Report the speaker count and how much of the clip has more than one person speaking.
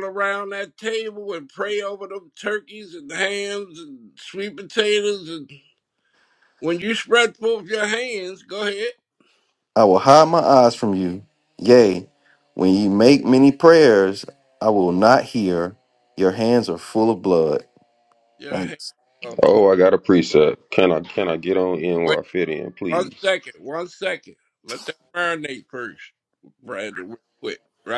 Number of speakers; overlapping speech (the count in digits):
3, about 3%